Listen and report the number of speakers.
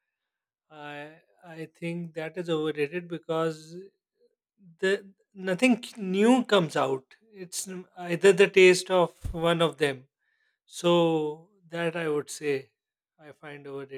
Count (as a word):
one